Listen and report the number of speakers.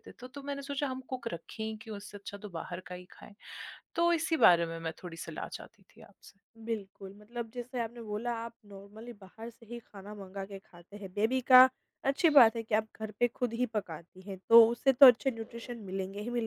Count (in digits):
2